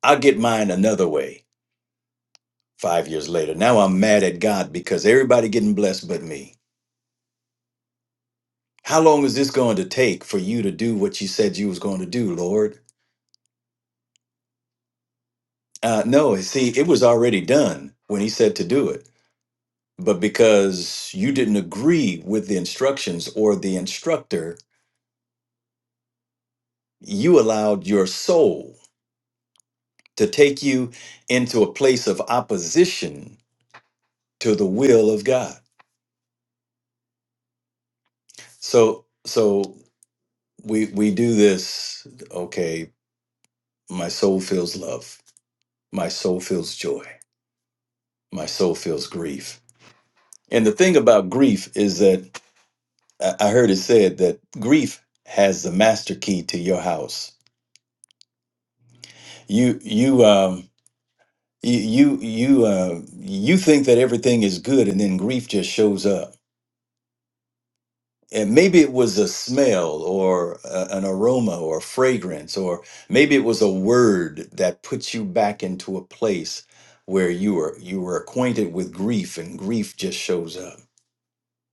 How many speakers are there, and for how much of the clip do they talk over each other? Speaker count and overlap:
one, no overlap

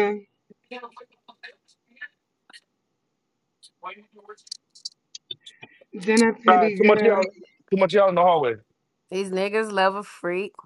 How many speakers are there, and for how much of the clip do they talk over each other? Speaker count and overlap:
three, about 8%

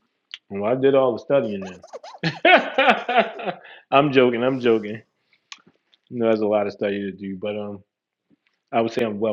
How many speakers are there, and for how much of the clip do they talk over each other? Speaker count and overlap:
one, no overlap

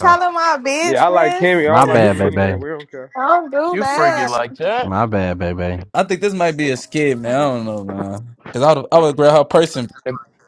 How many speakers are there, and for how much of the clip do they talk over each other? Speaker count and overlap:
five, about 23%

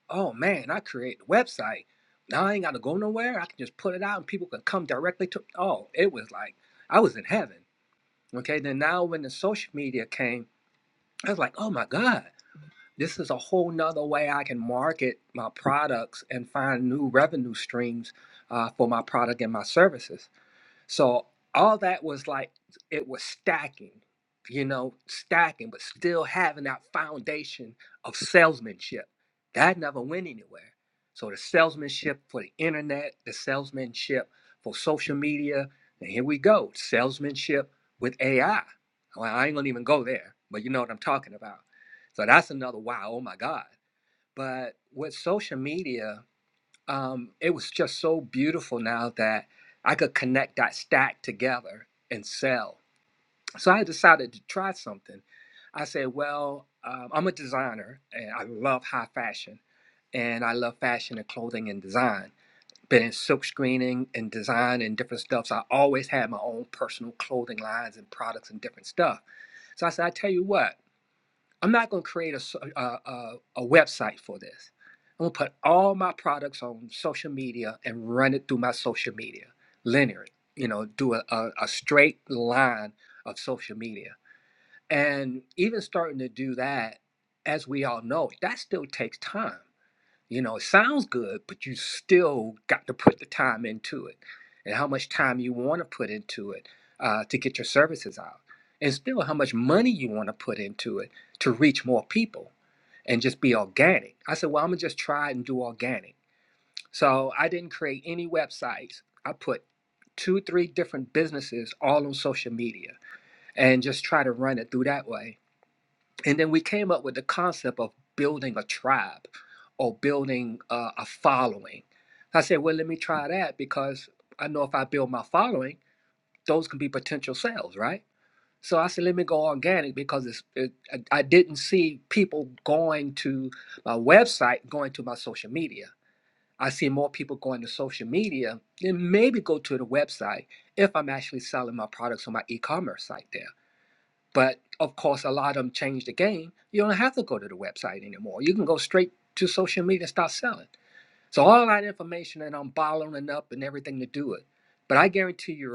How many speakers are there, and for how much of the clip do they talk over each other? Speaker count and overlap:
one, no overlap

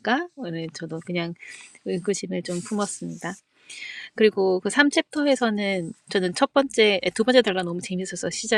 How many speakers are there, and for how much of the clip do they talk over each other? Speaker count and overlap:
one, no overlap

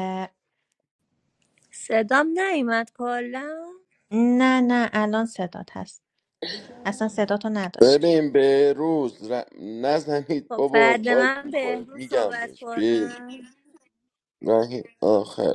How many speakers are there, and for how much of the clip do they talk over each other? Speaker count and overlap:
three, about 19%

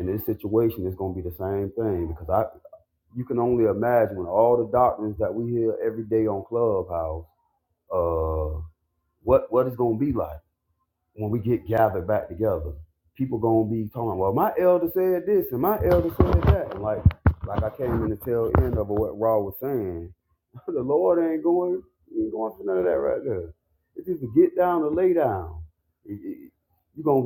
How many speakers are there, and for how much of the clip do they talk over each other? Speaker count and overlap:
one, no overlap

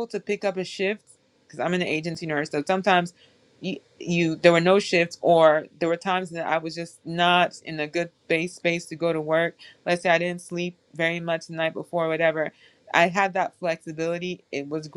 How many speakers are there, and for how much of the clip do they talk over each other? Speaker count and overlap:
one, no overlap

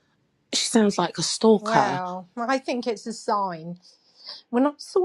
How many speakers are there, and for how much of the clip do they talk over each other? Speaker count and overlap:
two, about 6%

